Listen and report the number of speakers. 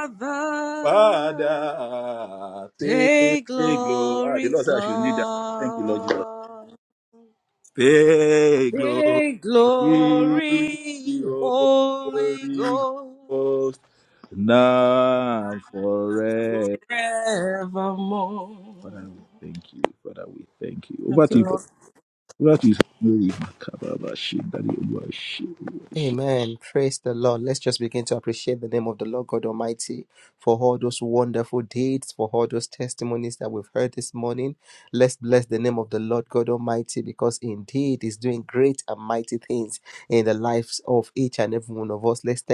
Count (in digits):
3